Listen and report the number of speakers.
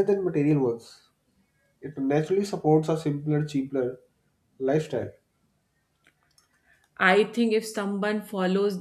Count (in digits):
2